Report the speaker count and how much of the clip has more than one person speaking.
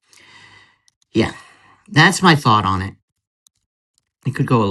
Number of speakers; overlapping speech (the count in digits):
1, no overlap